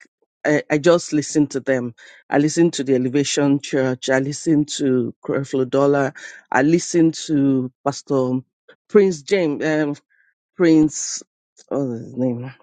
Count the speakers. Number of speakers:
one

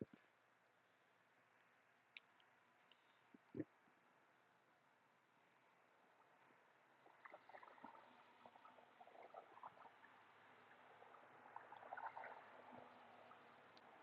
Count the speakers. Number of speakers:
zero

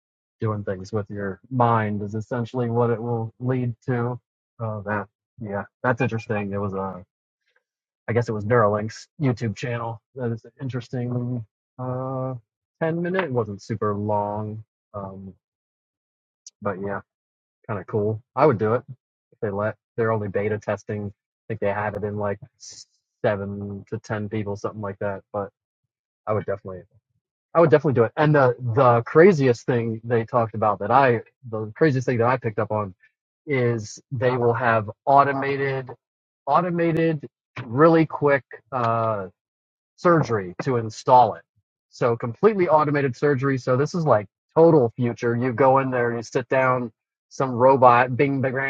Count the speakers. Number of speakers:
one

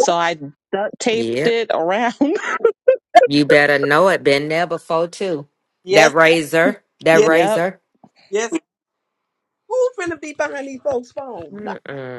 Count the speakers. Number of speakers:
three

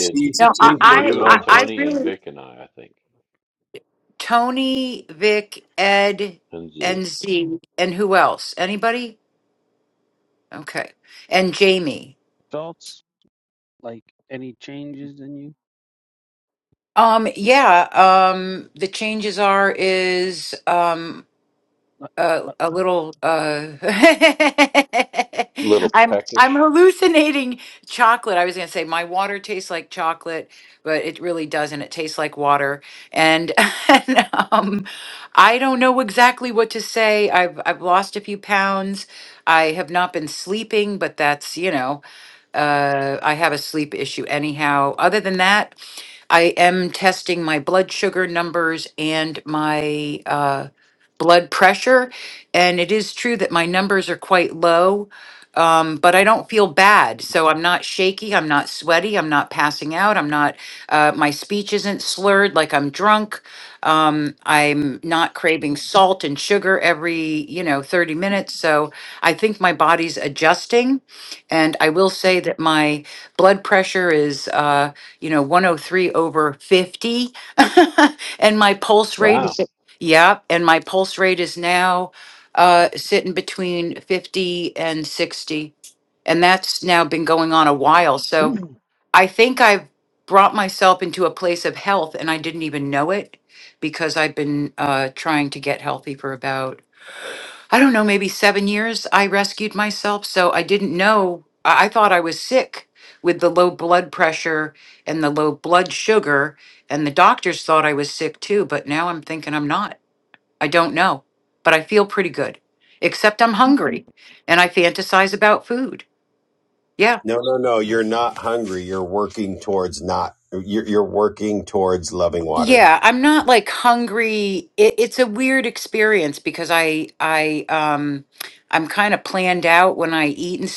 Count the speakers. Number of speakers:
four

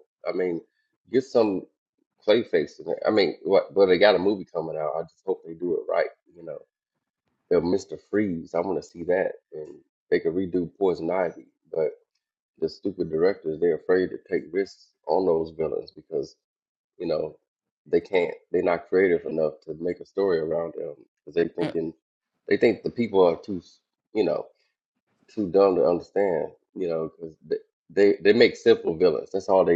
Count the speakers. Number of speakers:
one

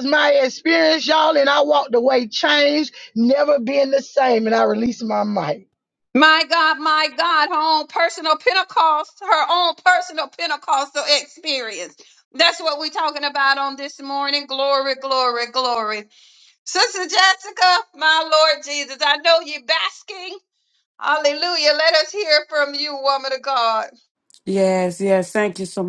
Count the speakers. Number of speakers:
three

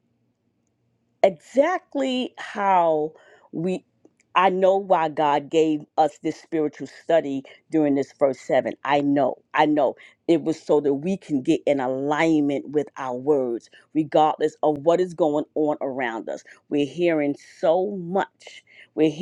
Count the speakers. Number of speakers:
one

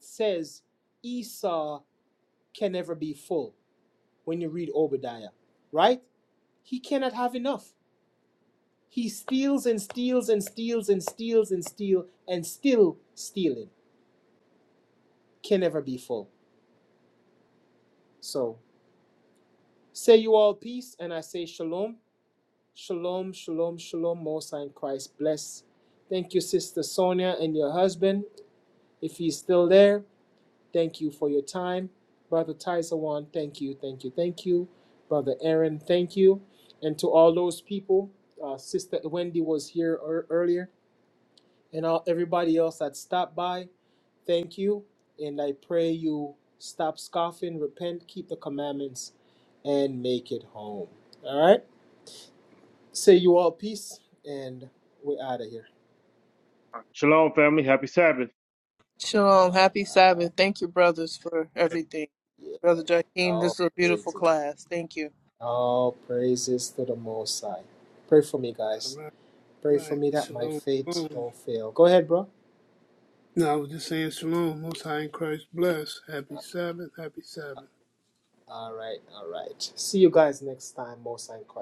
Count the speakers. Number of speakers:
four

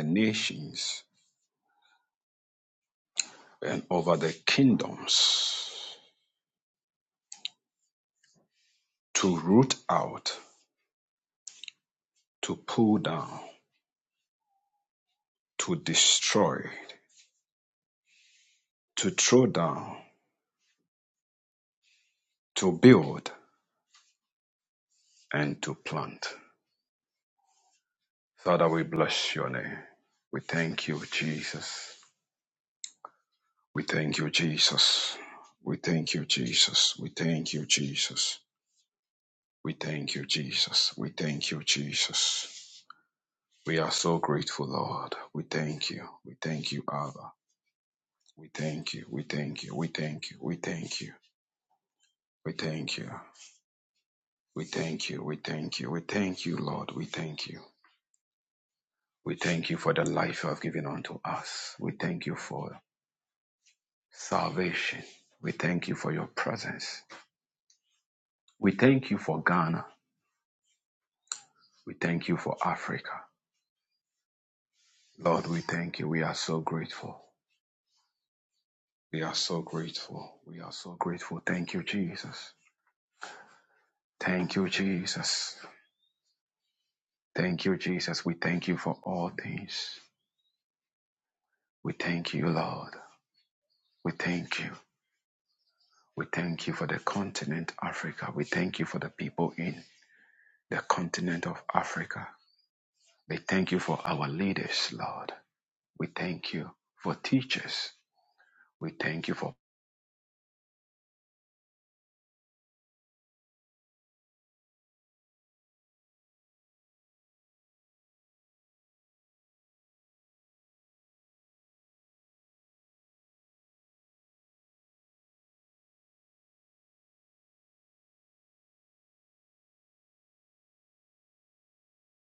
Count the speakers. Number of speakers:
one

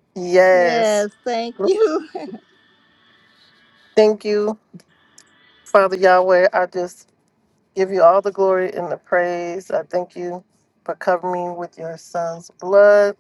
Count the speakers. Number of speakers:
two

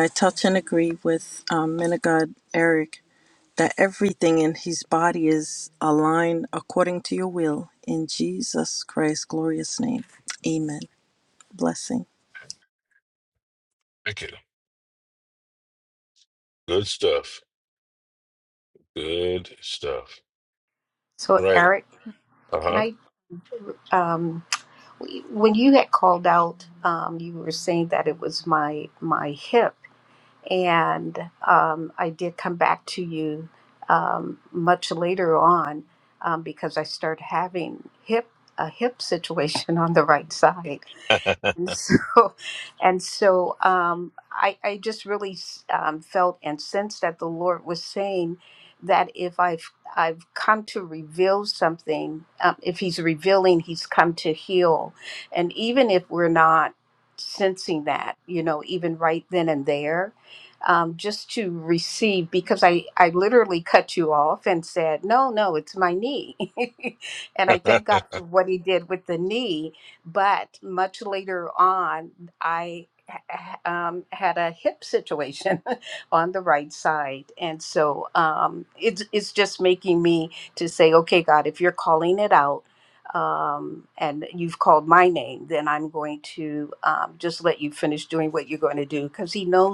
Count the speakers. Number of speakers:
three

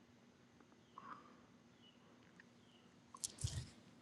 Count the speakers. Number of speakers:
zero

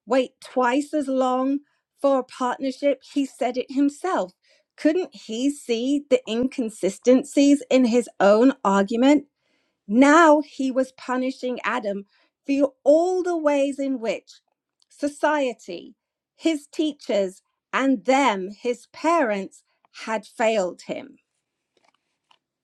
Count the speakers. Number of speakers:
one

